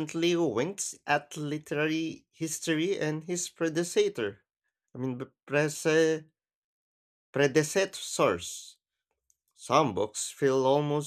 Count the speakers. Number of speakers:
1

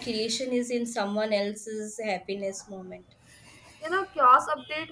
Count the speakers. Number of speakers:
2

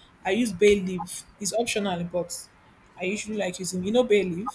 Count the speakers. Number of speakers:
1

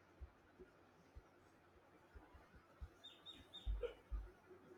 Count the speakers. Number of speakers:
0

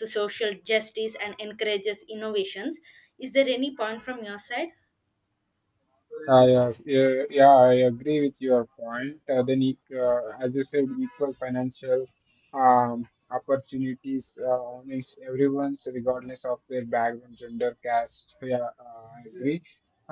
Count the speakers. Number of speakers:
2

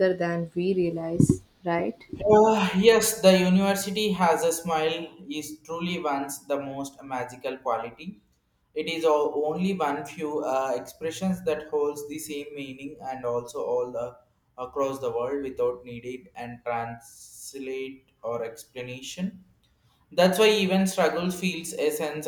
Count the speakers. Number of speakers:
2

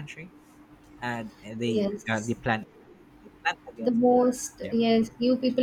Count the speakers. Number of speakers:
2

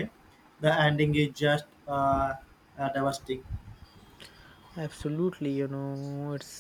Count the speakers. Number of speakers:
2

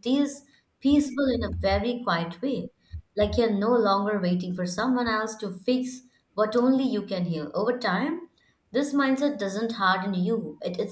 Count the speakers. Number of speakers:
1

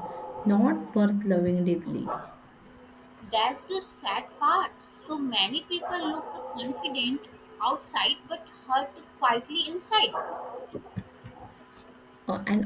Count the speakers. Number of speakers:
2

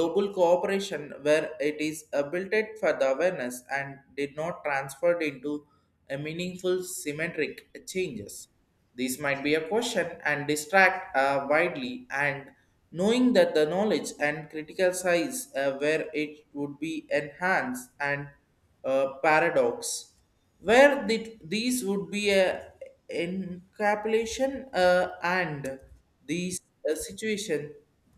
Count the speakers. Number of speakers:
1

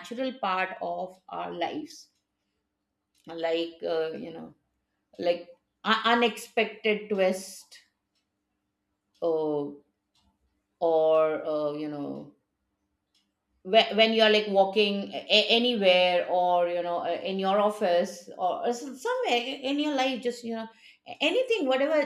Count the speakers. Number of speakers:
1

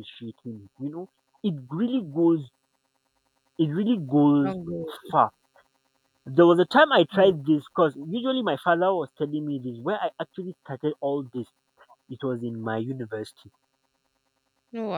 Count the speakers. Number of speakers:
2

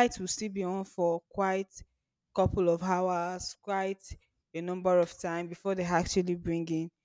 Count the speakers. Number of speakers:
1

